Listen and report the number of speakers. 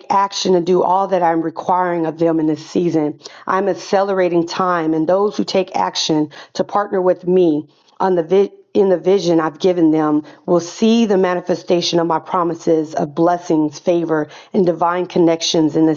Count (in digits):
1